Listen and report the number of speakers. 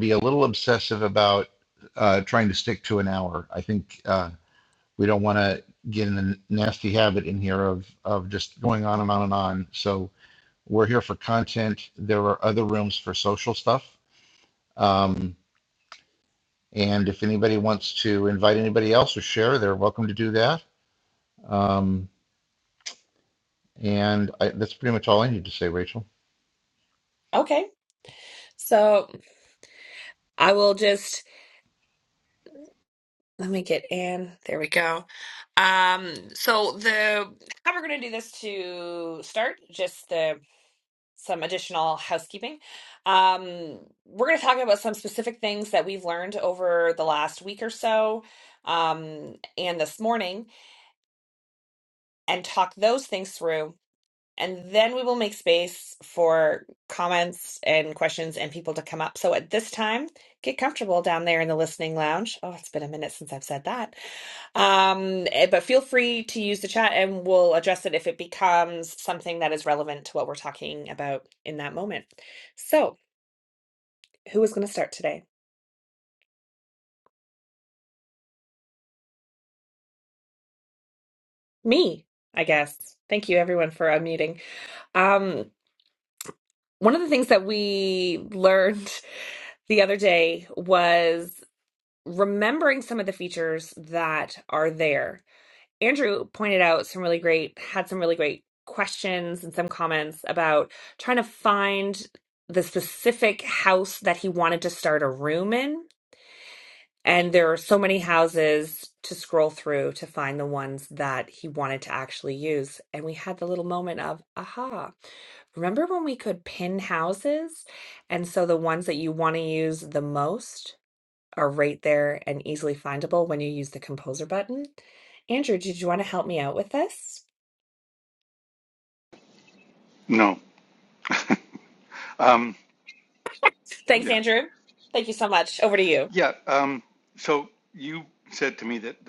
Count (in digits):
3